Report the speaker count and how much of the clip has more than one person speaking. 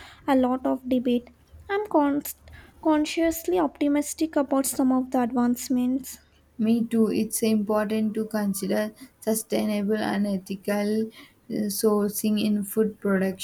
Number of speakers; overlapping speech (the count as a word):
two, no overlap